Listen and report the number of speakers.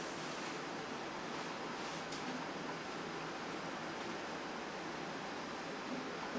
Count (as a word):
zero